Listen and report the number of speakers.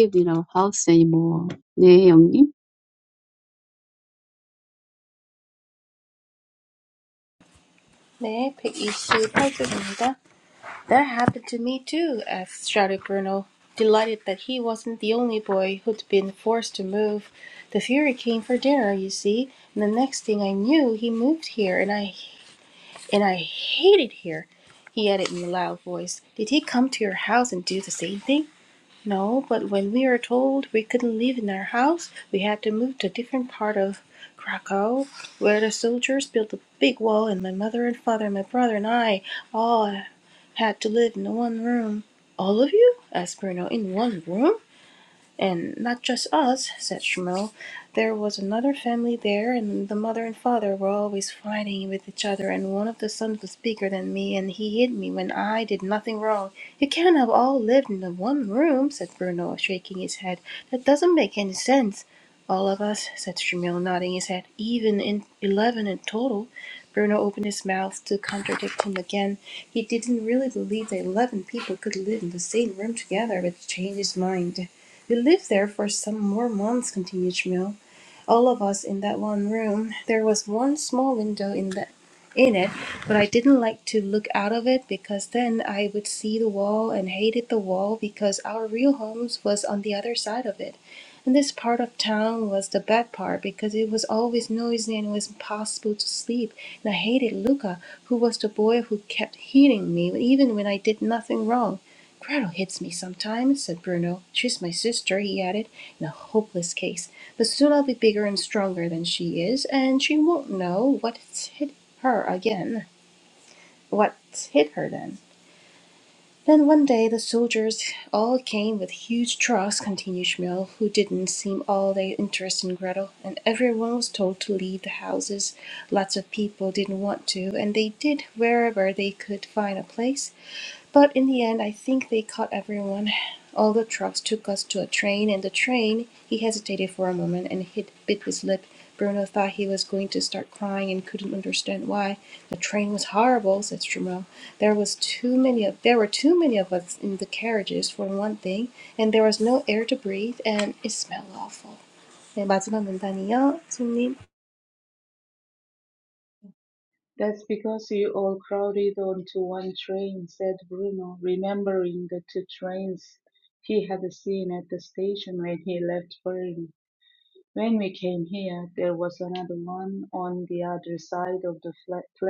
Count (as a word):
three